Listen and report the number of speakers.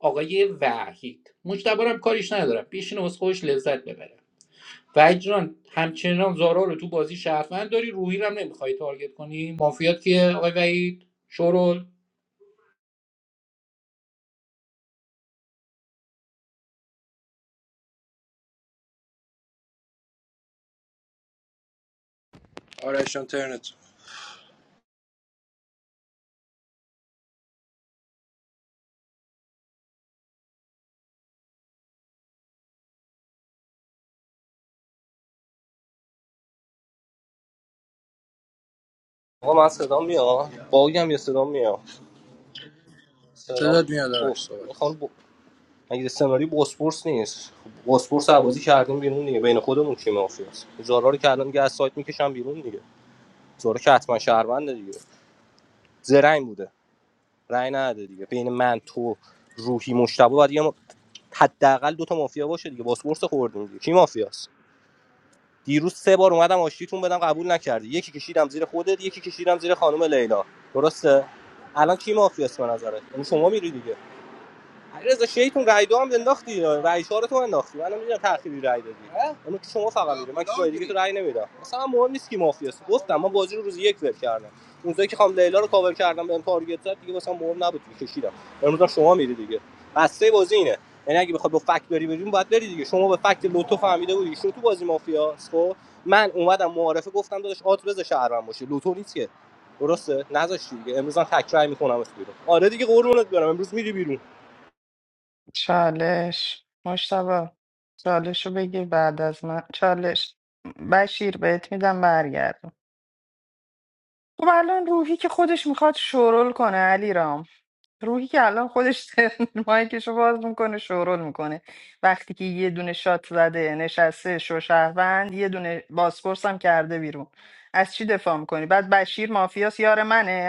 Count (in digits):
4